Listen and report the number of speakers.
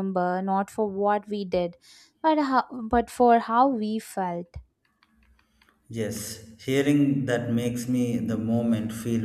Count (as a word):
two